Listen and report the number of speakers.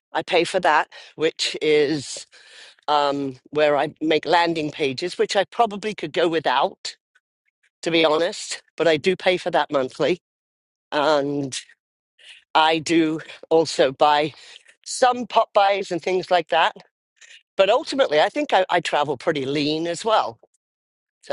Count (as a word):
one